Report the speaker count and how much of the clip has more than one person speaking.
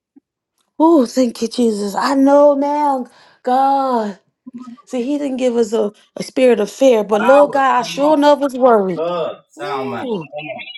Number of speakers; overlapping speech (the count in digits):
2, about 17%